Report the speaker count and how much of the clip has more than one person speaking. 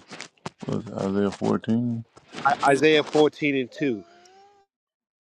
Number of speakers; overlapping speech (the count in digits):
2, no overlap